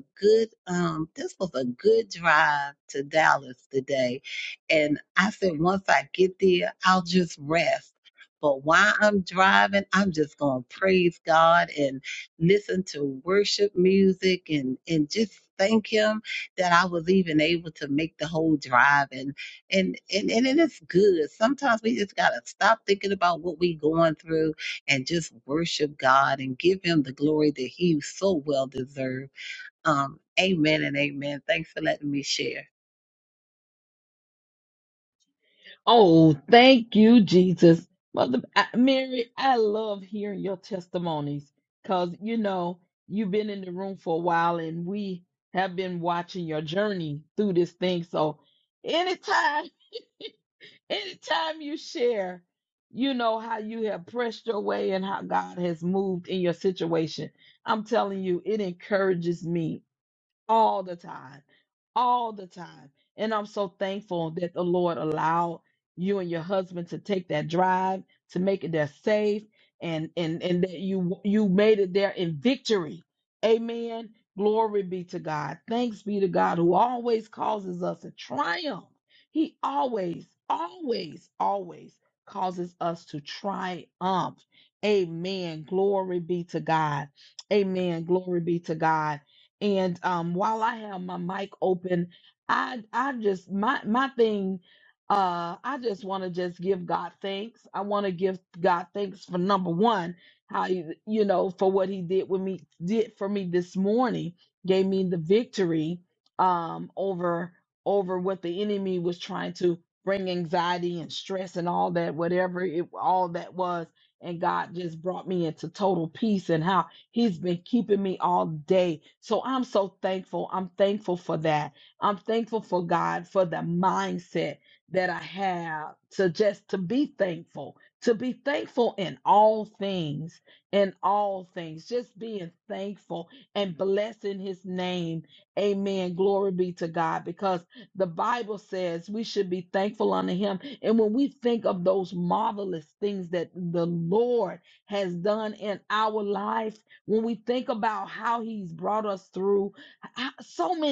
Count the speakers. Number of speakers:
2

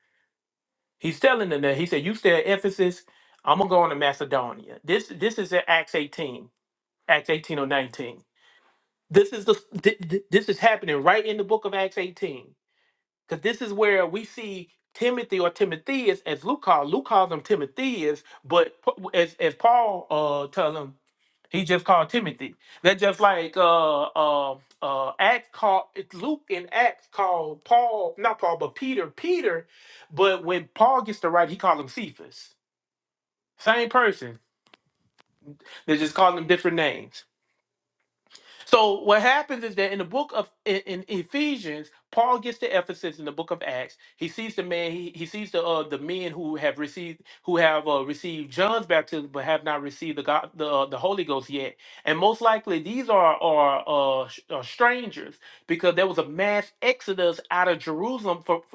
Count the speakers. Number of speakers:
1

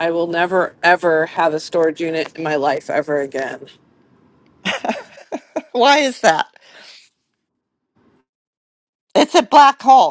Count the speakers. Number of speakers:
2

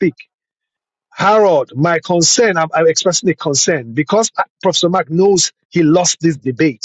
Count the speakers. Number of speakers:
1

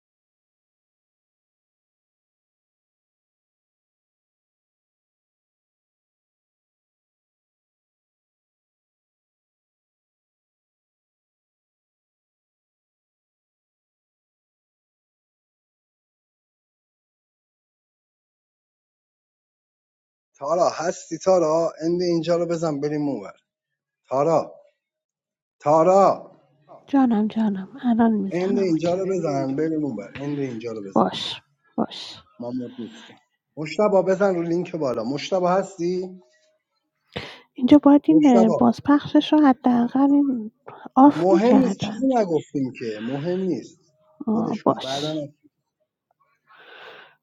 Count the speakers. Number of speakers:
2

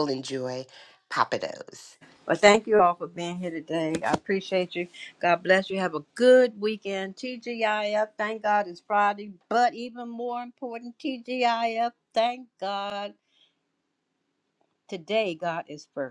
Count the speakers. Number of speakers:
2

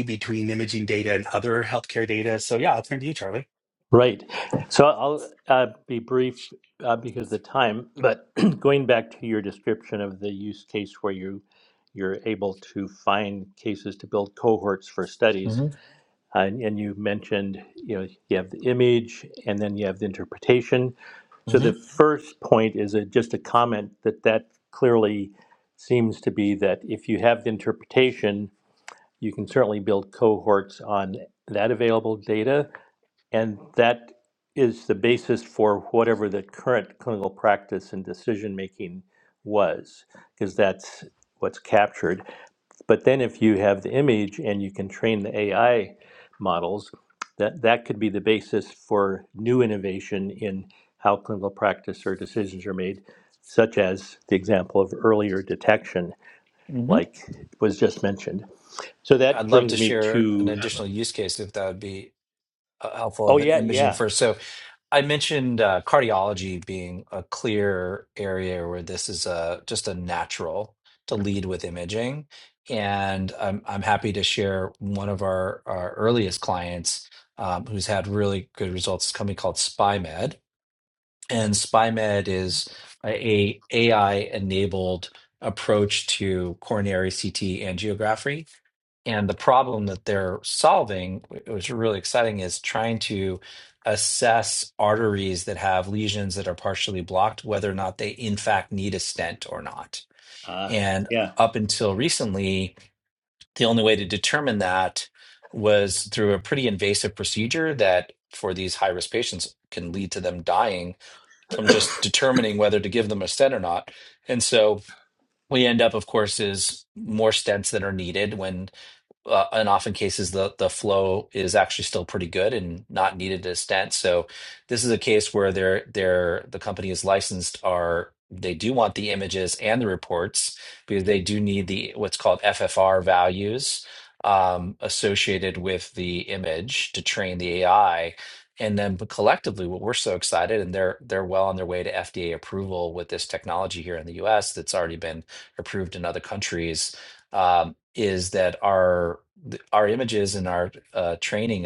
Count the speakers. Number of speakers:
3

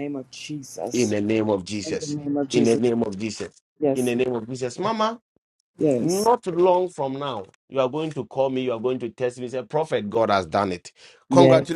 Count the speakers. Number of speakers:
2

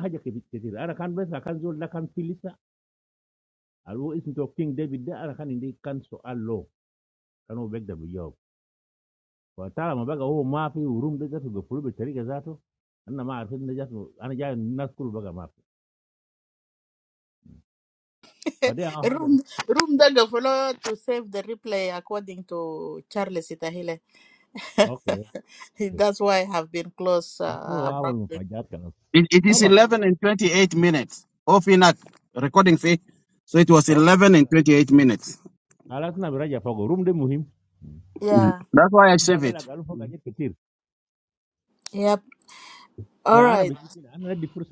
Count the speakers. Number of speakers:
3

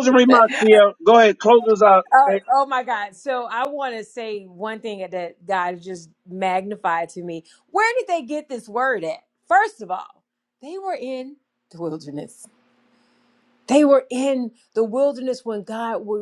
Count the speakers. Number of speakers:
2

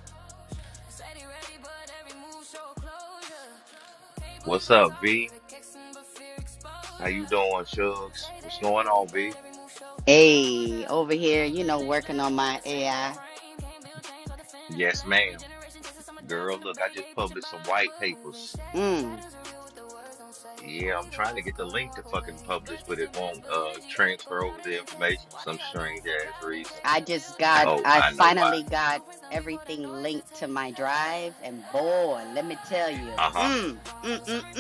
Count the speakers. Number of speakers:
3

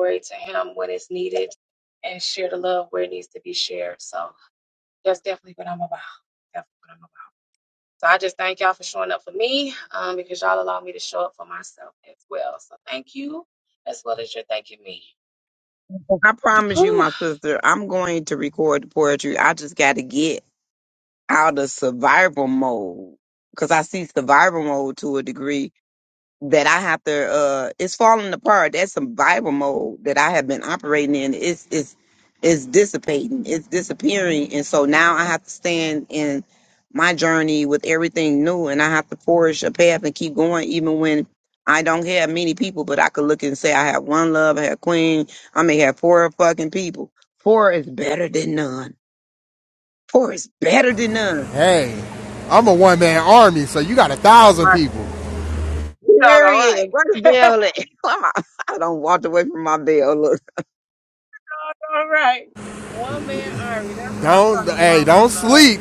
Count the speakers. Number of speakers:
3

